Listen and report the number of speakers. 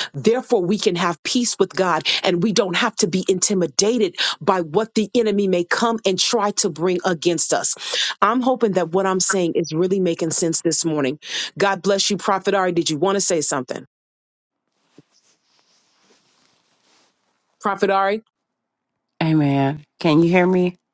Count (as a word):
two